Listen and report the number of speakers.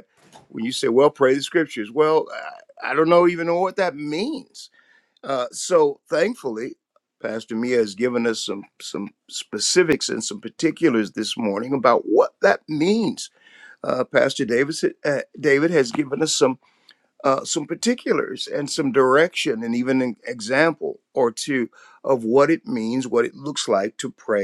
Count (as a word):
one